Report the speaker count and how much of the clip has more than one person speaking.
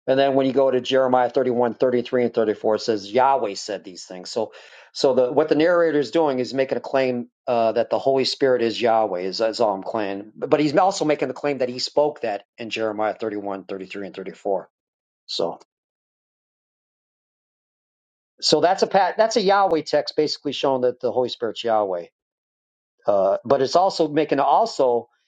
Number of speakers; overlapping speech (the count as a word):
one, no overlap